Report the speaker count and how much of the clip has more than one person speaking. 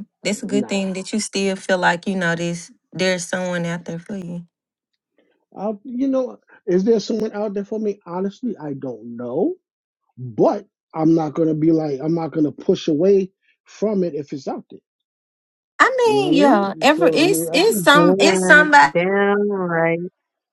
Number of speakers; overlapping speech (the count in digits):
3, about 16%